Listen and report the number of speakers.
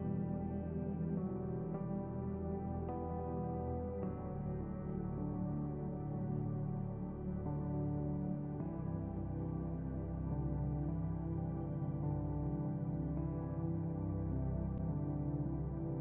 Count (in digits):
0